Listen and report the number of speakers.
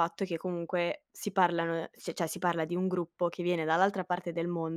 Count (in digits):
1